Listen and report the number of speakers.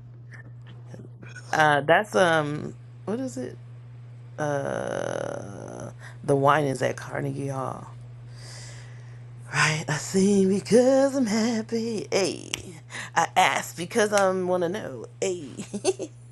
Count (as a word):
one